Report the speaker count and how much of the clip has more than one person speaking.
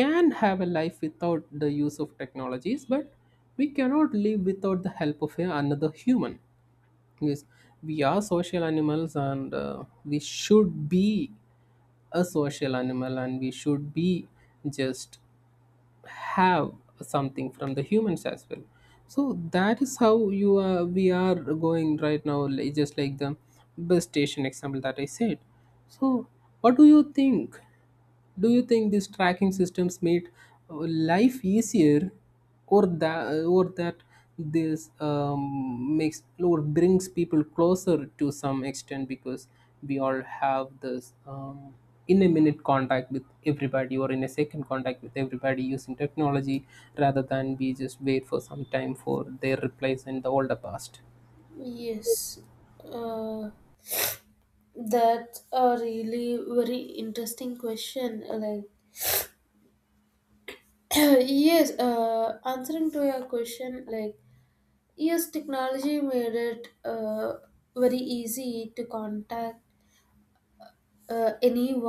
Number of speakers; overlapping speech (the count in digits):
2, no overlap